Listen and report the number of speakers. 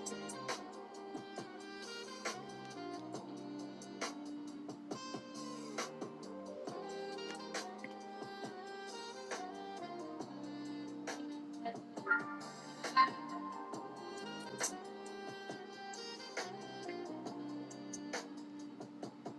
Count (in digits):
0